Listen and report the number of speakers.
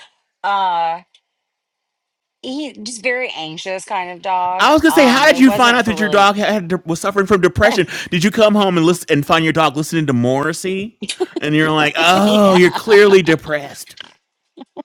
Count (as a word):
two